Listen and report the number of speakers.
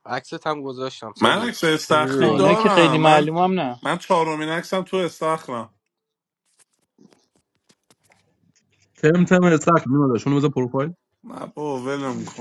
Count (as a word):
four